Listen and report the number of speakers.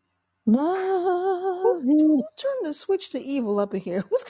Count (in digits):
2